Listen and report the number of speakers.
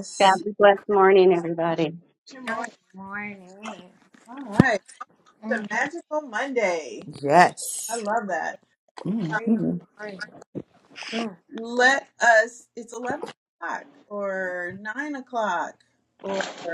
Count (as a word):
four